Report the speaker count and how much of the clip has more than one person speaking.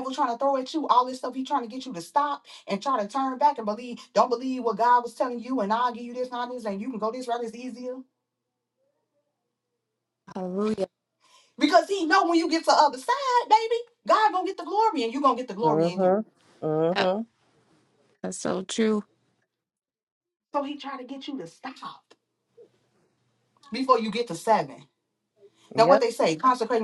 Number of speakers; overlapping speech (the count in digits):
3, about 3%